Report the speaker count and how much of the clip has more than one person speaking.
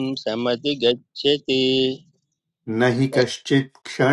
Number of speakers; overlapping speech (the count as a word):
two, about 8%